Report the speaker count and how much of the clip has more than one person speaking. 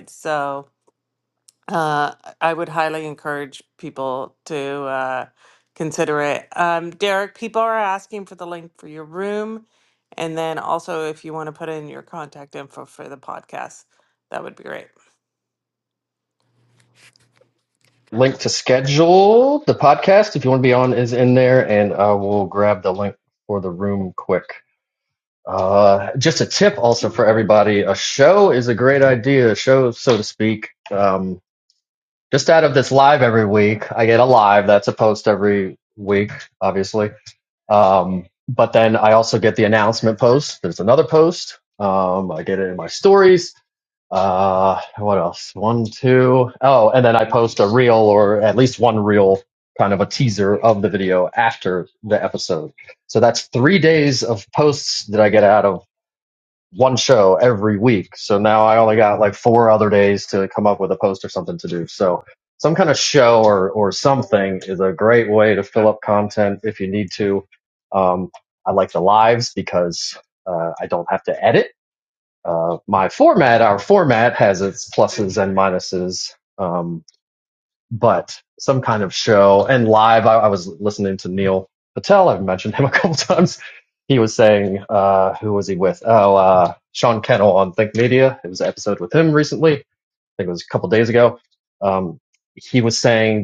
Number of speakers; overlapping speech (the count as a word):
two, no overlap